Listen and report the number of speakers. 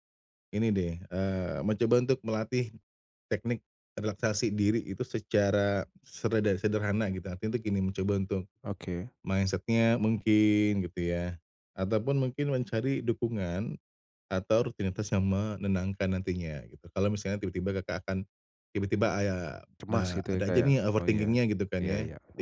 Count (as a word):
two